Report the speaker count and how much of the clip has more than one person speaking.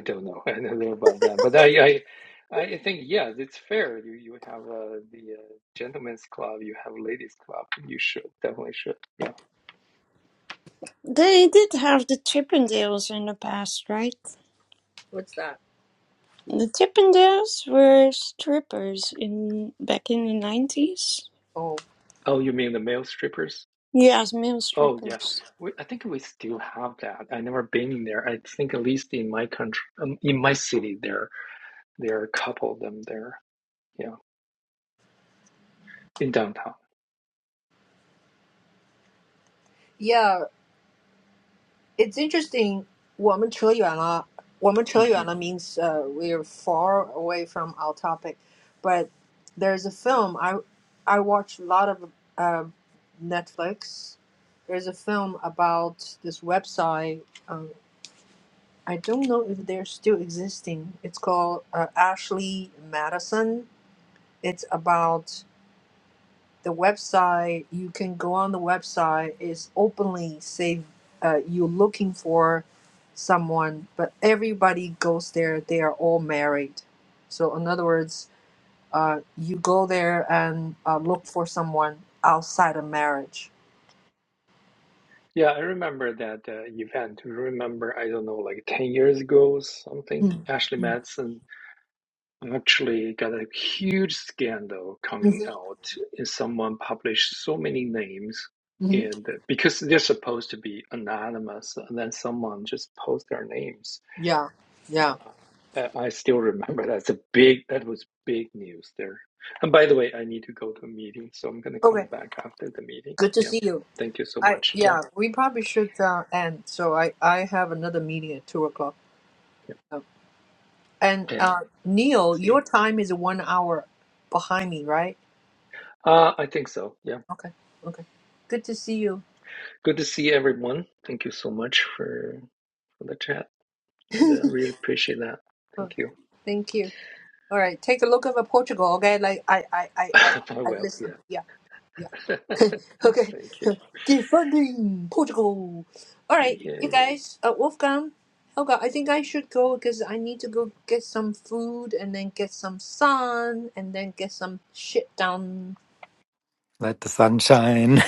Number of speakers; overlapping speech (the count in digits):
4, about 3%